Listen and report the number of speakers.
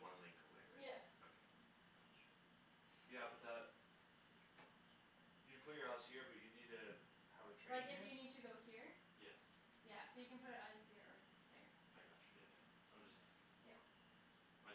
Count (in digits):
3